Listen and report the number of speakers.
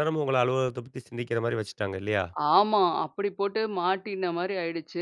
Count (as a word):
two